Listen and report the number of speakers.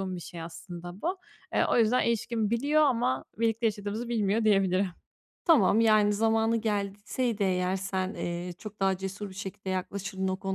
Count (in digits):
2